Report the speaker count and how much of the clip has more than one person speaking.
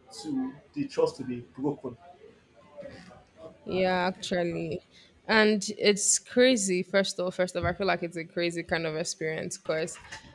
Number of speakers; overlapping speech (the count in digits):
2, no overlap